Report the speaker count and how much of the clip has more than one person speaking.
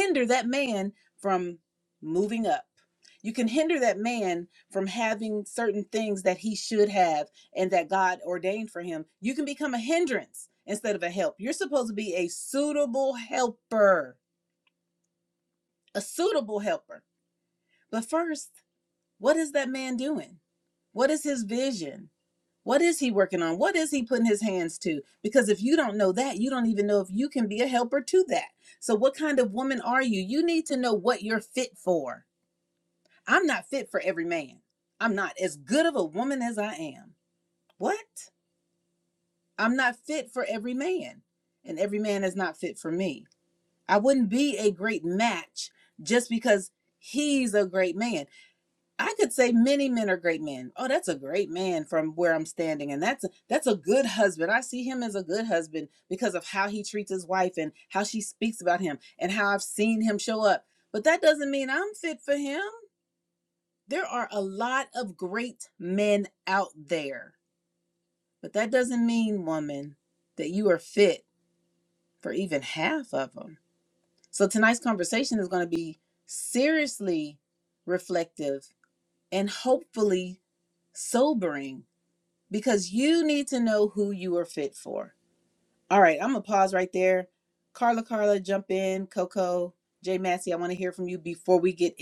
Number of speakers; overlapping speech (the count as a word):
one, no overlap